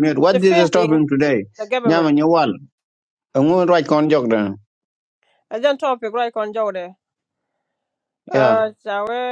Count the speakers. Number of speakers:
2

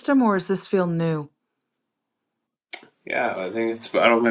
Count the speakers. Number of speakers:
2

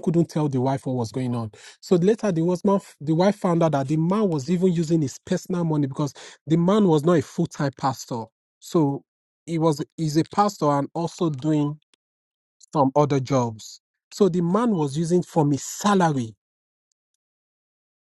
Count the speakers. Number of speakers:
1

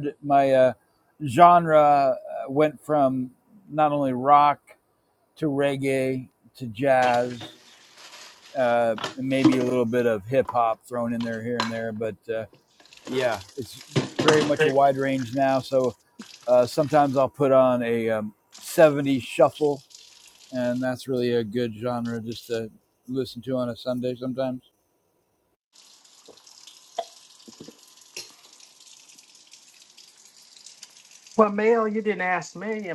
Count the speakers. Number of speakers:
2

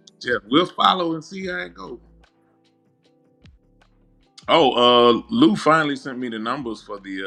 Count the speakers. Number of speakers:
1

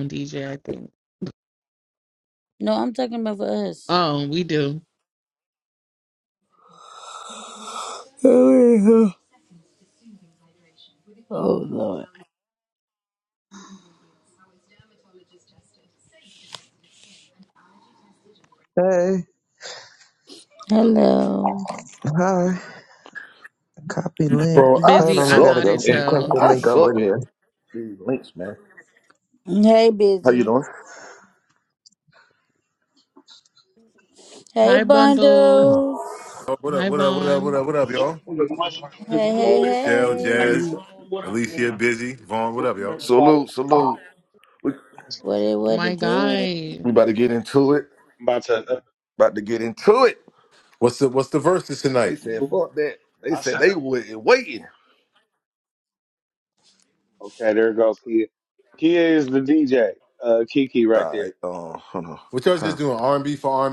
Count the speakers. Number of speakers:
6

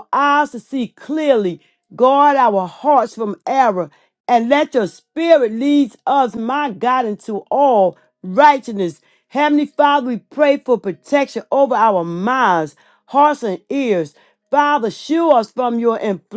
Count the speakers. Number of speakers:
1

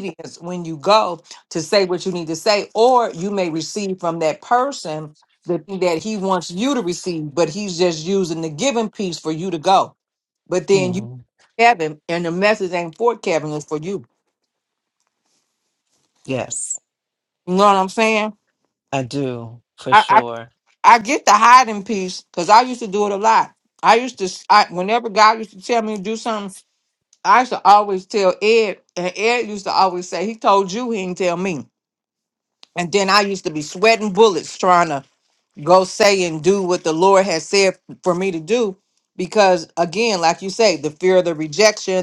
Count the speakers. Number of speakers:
2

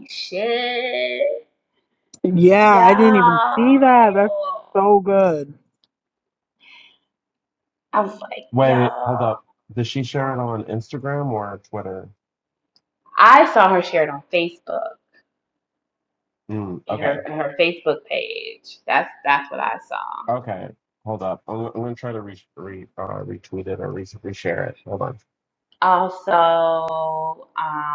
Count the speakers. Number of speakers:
3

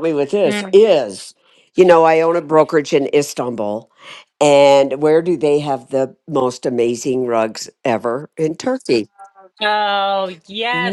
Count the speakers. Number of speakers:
2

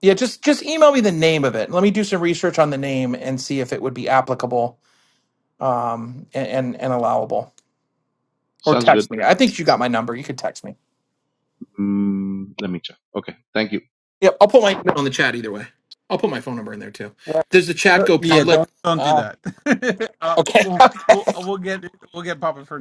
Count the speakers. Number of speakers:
3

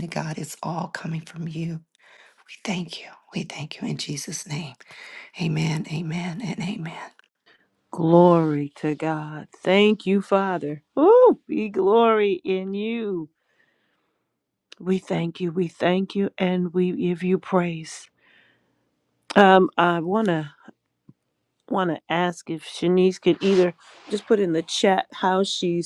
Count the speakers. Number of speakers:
2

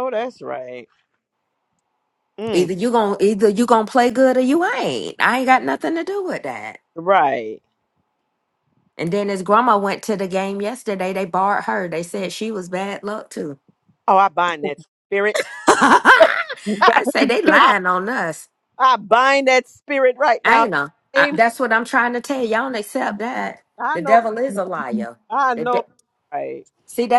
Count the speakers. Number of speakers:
2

